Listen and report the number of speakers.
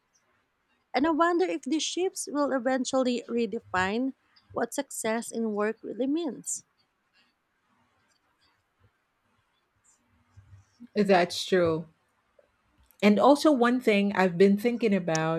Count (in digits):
2